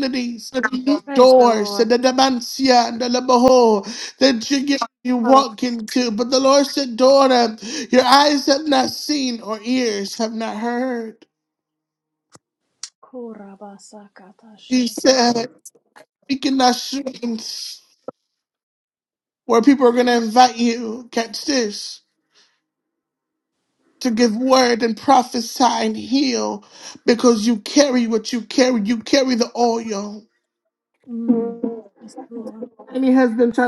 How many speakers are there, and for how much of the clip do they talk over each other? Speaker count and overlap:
2, about 3%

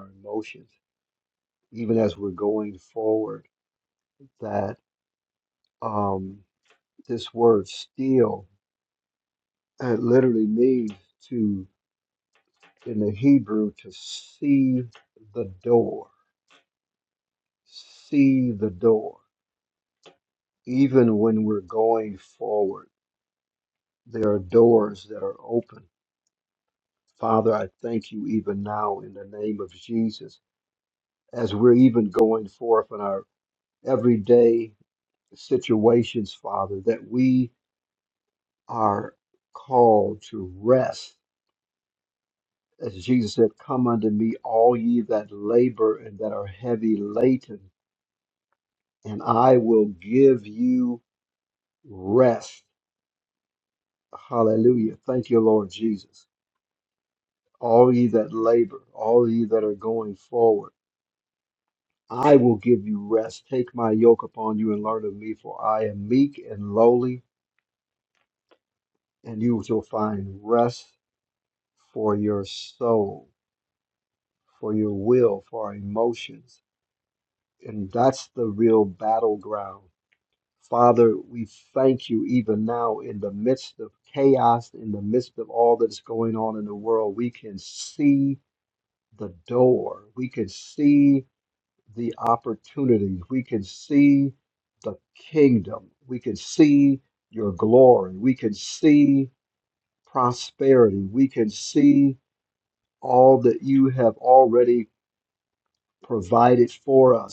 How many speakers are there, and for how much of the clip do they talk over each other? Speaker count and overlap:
1, no overlap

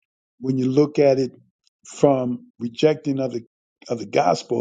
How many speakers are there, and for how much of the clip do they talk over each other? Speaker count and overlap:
1, no overlap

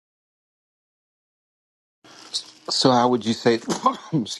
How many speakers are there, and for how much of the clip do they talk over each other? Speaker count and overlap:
1, no overlap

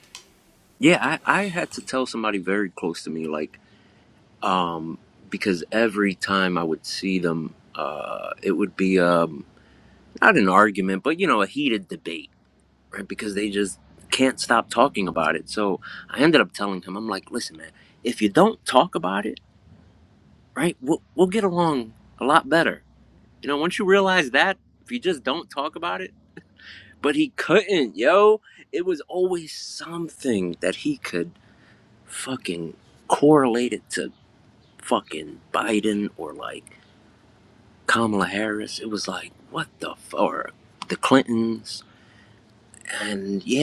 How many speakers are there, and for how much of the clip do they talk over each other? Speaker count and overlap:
1, no overlap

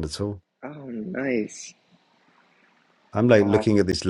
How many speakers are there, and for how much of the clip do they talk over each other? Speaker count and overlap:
2, about 6%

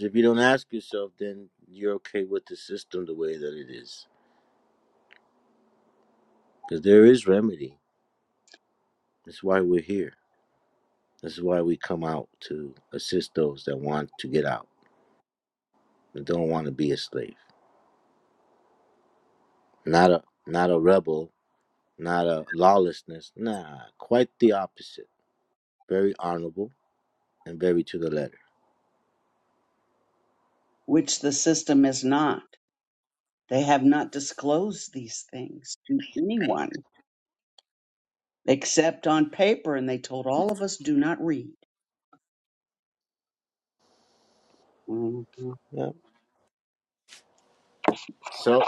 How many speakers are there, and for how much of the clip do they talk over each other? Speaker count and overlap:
2, no overlap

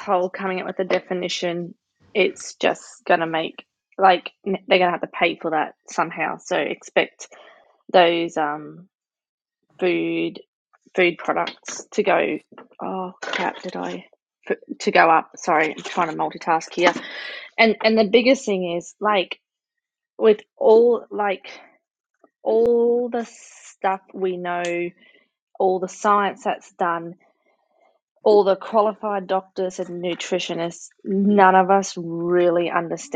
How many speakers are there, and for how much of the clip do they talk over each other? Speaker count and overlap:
1, no overlap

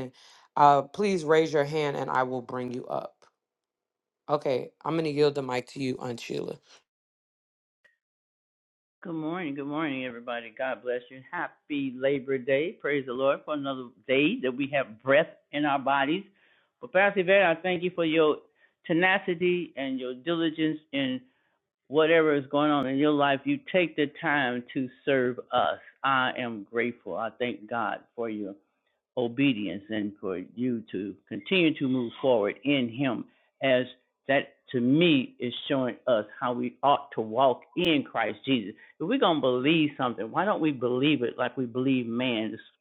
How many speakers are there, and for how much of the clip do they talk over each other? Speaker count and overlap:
2, no overlap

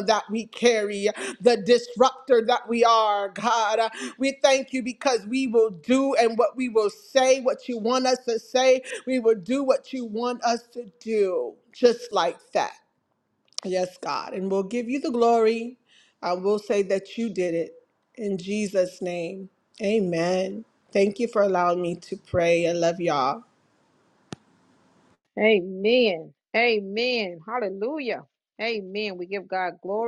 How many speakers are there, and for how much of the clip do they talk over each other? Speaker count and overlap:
2, no overlap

